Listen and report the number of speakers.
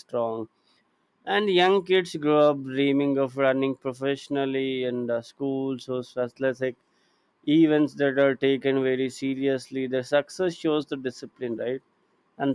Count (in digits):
1